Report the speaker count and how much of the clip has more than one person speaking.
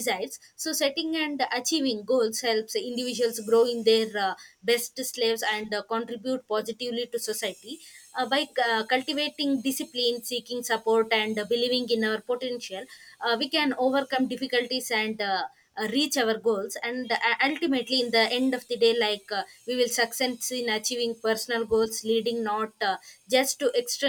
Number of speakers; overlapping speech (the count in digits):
1, no overlap